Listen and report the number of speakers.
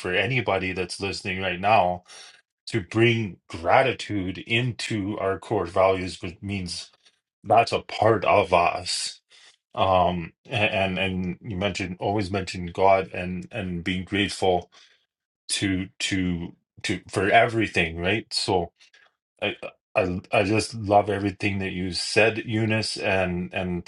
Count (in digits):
1